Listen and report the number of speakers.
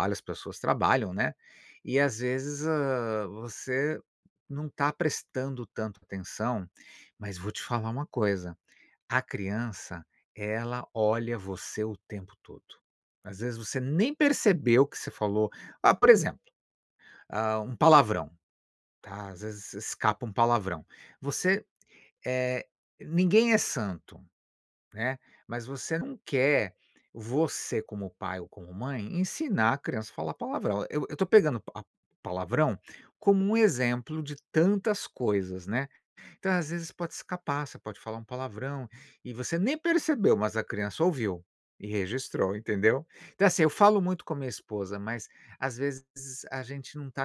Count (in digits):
1